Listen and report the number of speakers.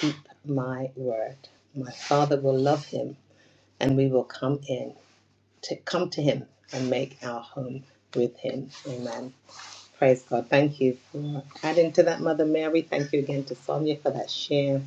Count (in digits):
1